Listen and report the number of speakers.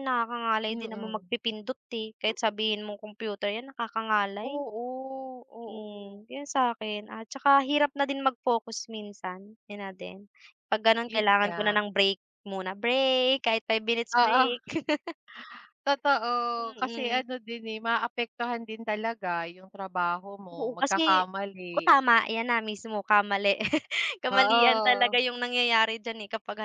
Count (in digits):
2